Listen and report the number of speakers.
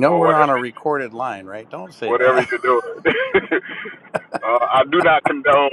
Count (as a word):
two